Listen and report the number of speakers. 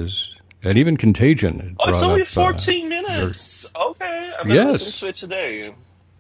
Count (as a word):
two